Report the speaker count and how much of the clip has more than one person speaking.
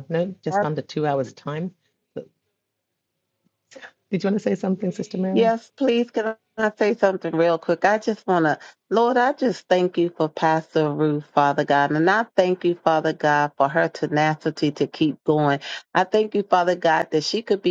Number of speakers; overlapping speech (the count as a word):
two, about 1%